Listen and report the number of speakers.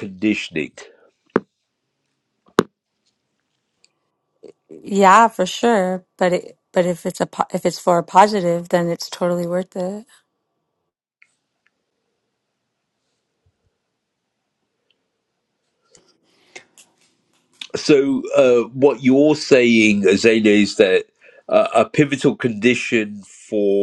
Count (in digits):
2